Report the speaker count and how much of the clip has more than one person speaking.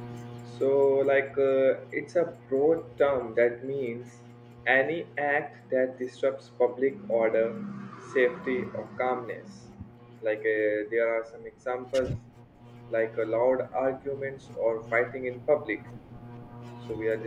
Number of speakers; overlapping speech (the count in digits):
1, no overlap